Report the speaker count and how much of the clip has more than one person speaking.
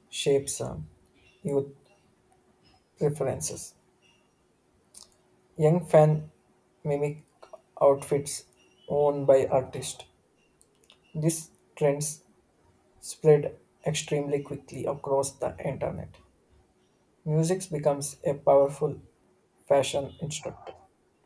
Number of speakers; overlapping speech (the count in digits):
1, no overlap